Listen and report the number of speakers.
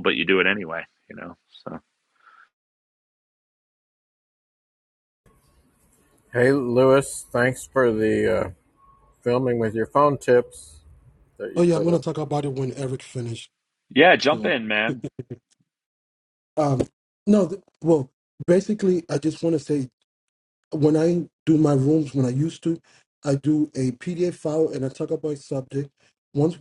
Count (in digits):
3